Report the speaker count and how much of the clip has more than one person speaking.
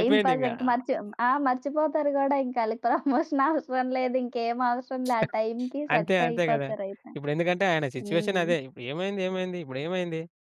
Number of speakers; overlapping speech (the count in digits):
2, about 19%